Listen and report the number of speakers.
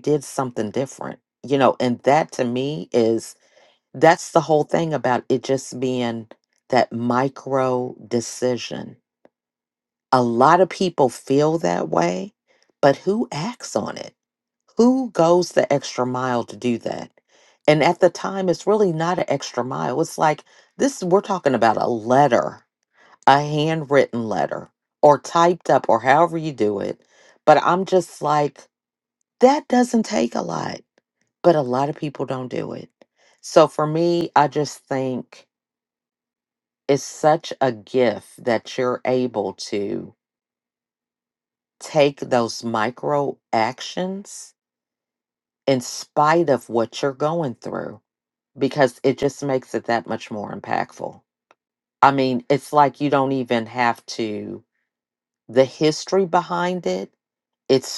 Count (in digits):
1